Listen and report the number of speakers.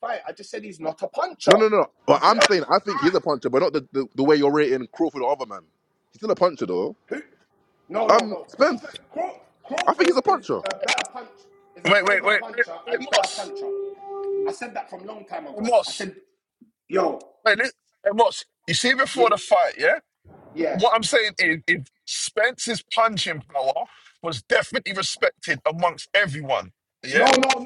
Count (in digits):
3